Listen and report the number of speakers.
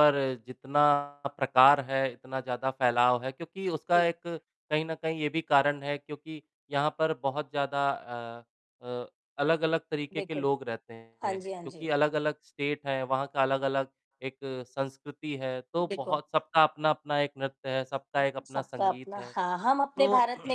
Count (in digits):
2